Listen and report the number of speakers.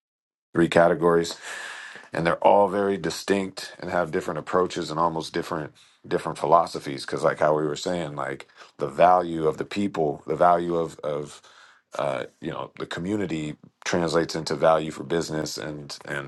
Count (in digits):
1